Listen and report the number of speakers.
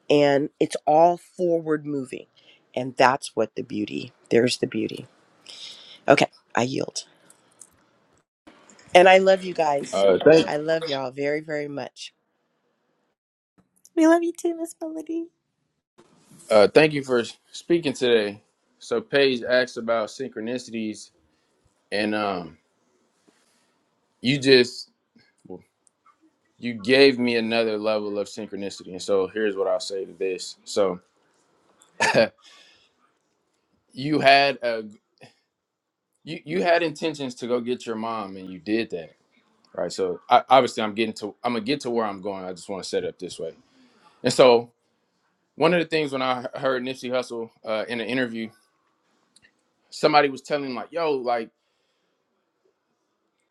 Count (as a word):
three